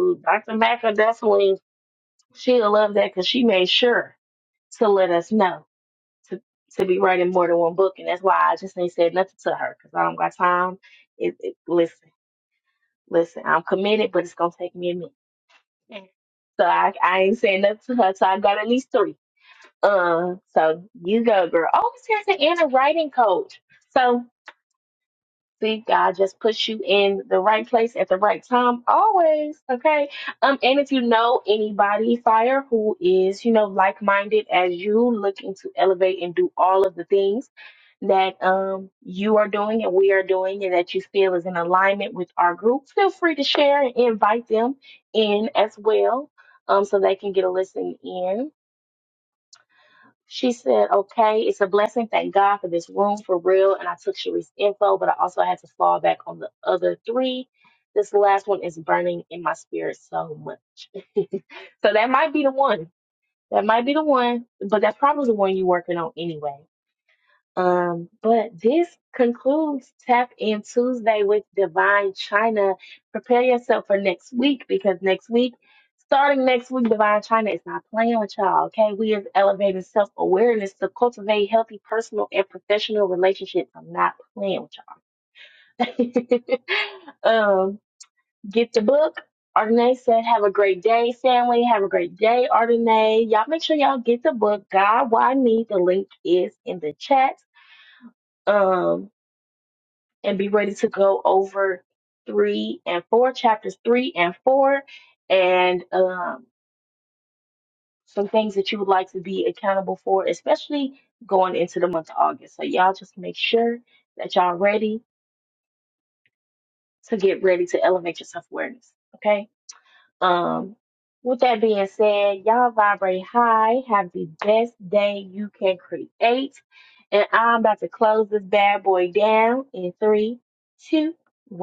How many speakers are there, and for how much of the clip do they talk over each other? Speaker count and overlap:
1, no overlap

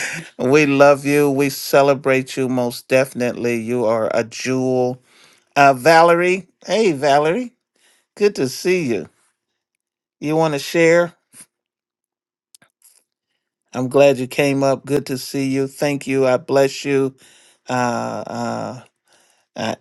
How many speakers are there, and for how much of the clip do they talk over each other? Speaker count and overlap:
1, no overlap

